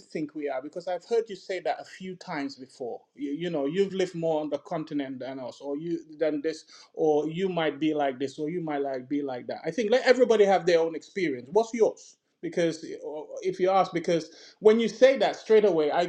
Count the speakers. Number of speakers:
one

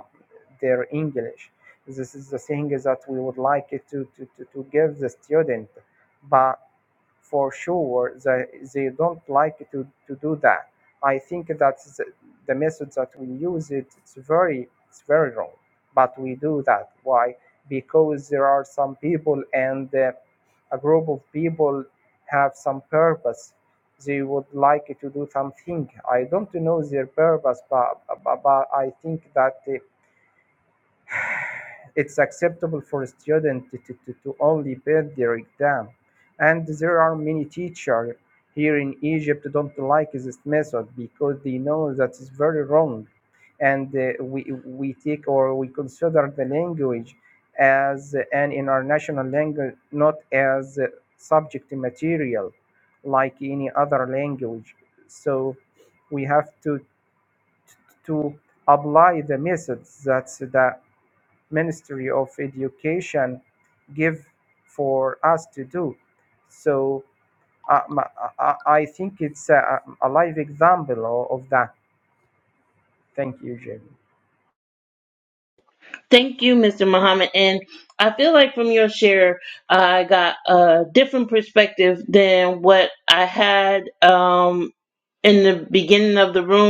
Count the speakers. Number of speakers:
two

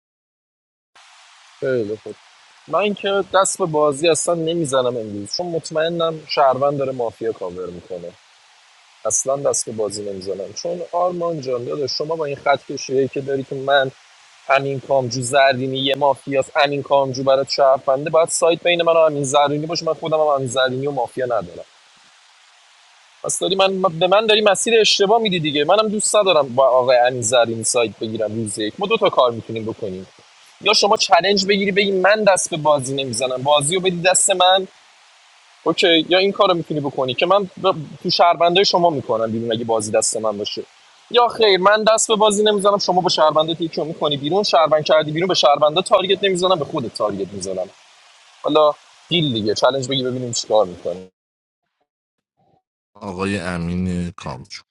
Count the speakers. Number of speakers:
two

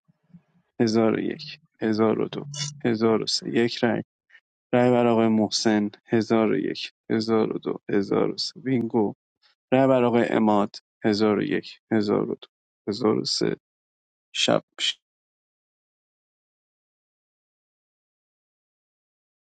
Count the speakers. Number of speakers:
one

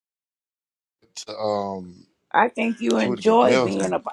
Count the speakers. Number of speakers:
two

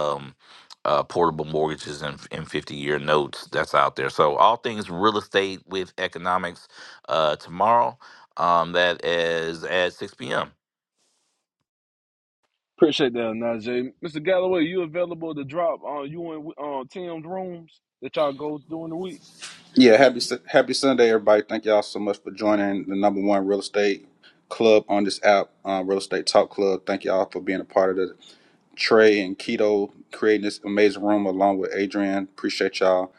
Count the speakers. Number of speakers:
three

